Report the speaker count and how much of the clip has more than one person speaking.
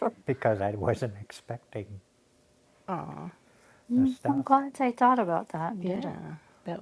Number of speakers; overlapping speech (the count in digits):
3, about 12%